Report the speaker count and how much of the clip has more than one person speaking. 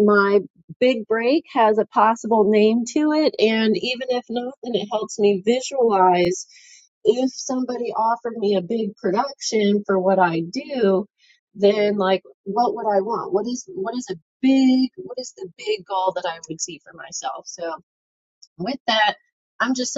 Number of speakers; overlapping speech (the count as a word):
one, no overlap